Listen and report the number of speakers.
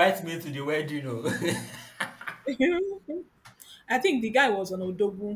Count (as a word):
two